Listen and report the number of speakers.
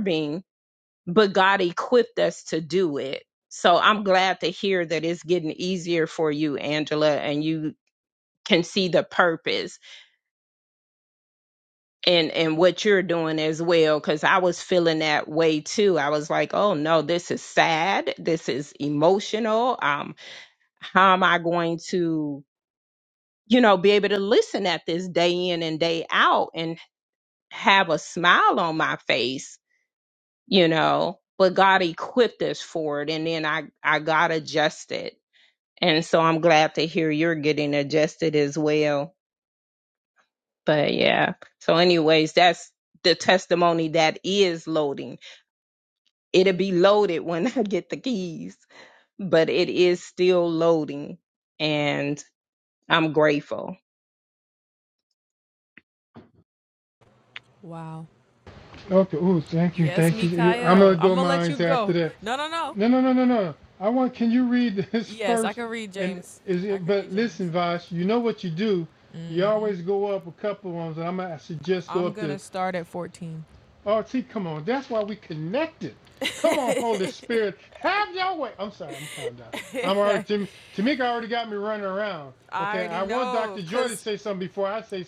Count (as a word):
three